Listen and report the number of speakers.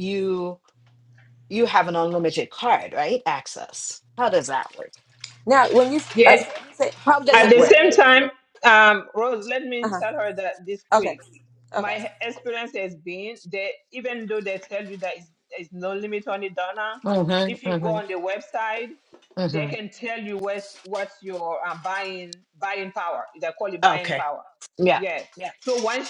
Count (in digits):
3